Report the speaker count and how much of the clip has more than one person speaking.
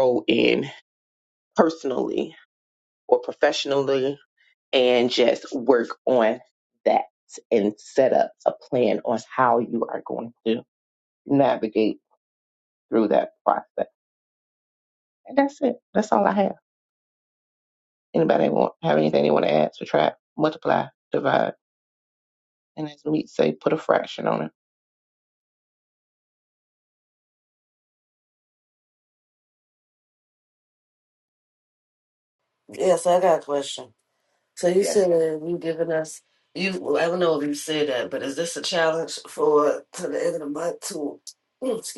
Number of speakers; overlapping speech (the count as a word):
two, under 1%